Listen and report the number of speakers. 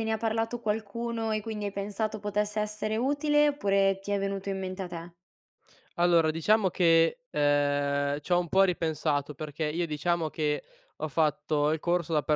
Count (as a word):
two